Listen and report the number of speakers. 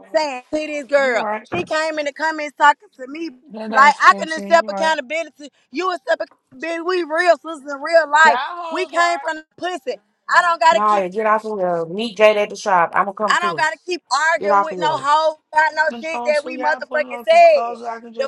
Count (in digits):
3